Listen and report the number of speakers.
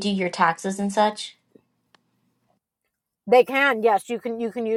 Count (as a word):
two